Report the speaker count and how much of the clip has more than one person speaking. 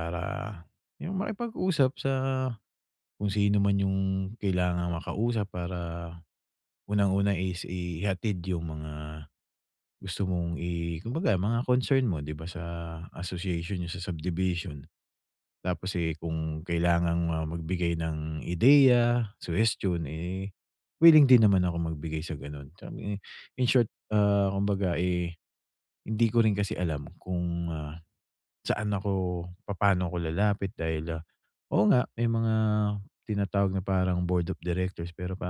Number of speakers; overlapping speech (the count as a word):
one, no overlap